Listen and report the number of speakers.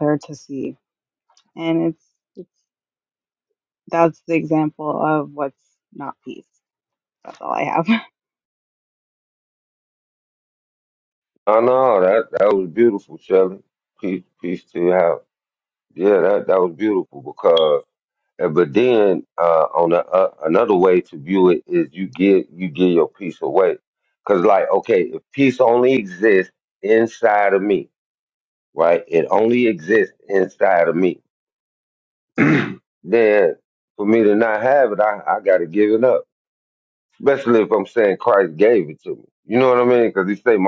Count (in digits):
2